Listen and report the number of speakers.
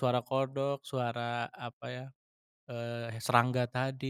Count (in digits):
1